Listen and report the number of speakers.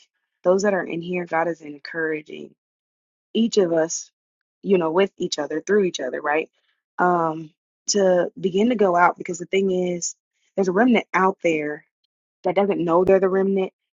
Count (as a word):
one